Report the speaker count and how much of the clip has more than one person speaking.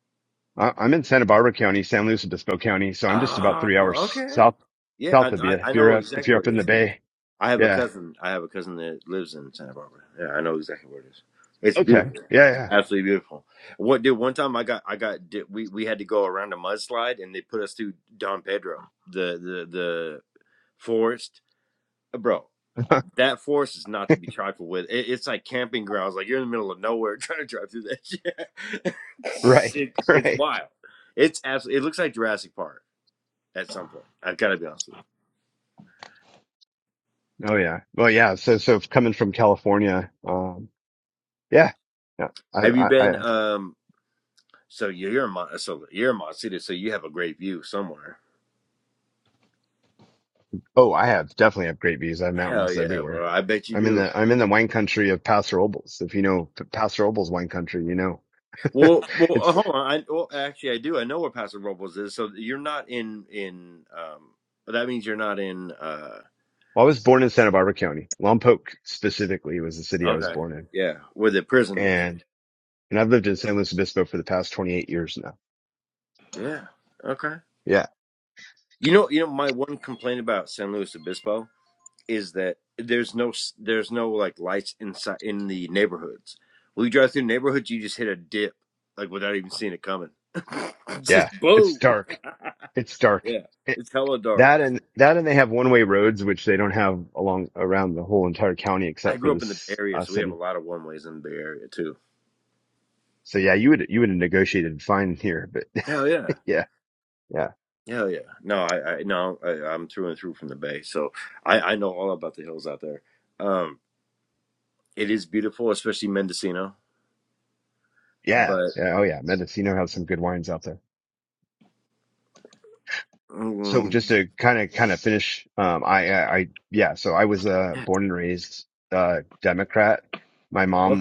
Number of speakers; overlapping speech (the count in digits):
2, about 8%